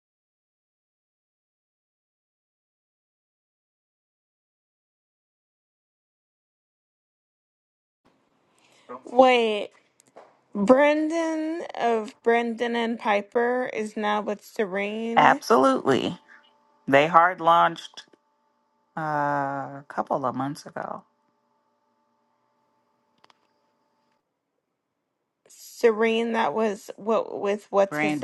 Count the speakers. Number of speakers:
two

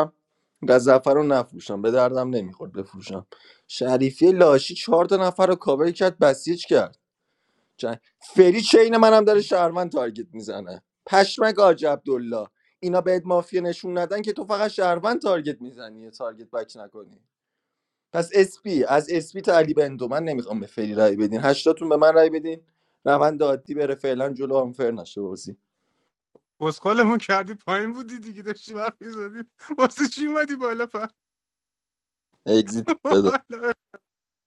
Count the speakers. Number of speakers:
two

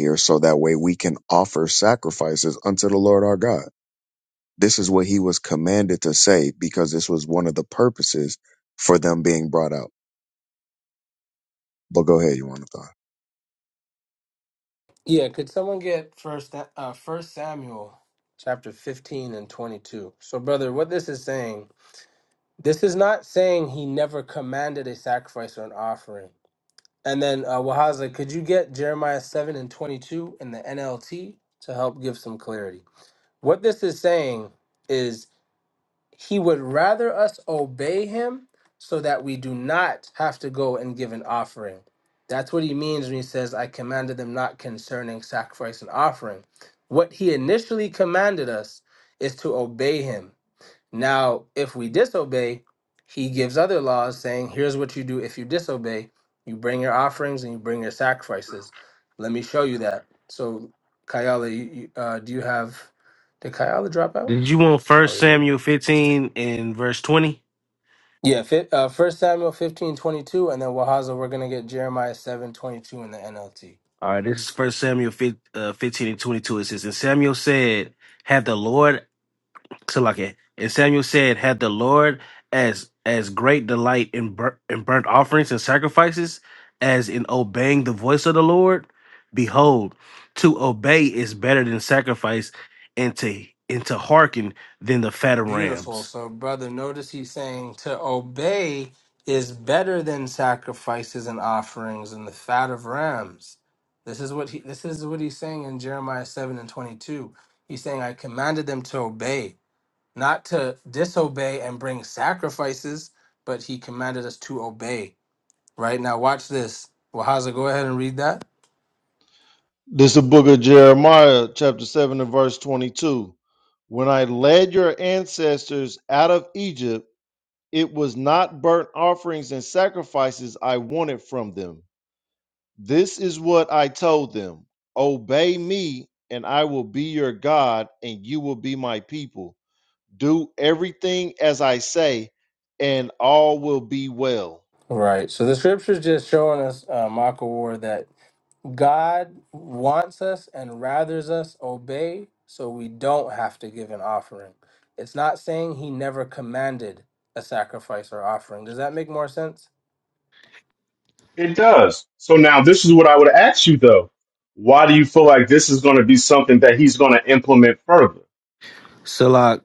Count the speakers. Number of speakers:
five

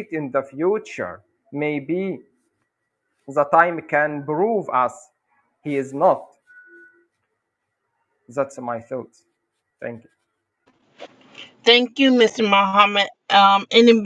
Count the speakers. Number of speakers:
two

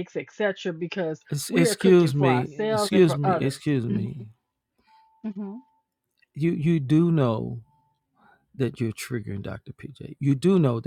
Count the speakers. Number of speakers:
two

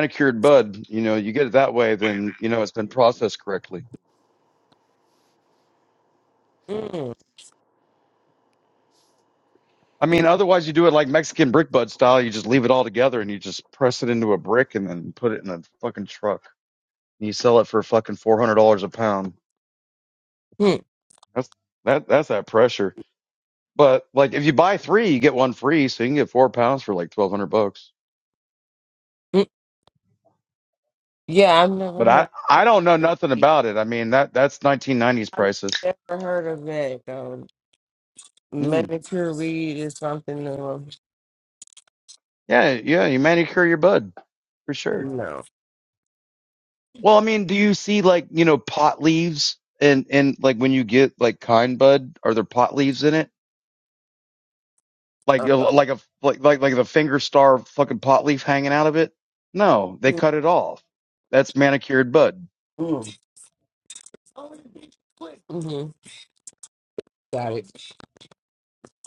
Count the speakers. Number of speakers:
two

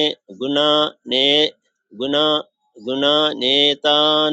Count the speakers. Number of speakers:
one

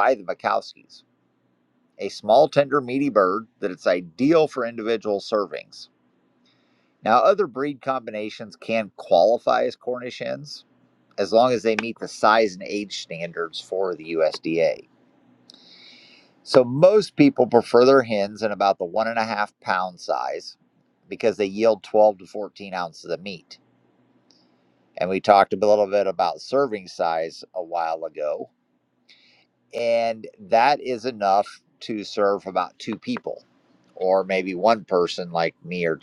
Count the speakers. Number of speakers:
one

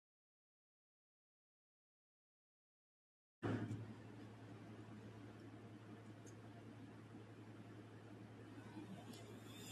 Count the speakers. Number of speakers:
zero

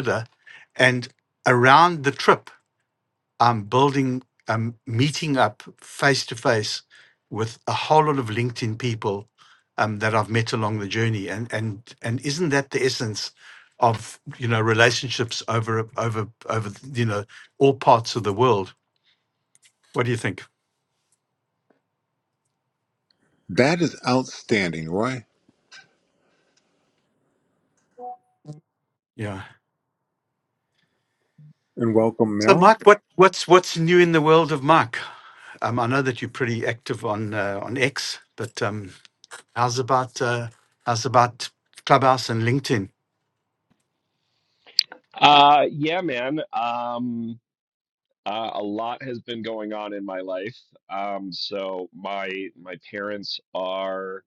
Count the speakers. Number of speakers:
three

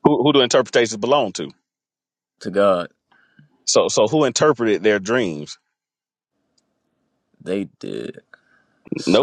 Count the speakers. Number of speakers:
two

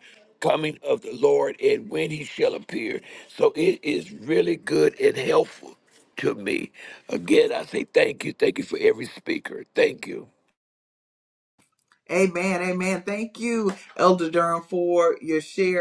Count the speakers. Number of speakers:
two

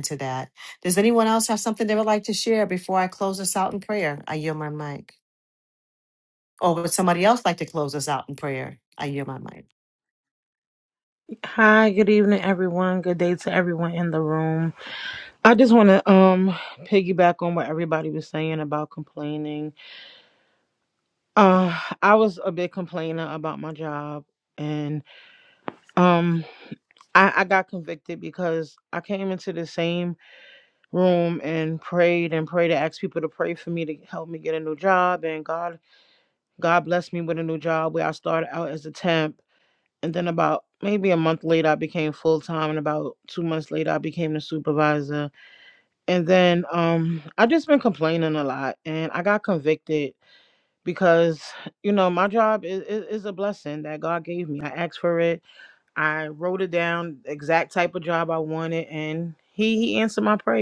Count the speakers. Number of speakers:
two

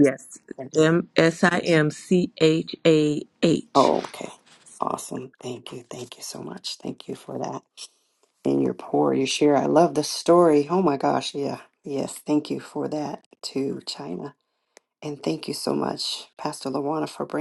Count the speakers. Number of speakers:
two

